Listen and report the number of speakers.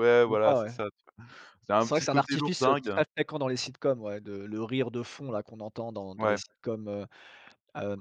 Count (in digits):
2